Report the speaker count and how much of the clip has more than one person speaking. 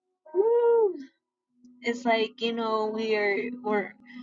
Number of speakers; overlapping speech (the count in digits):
1, no overlap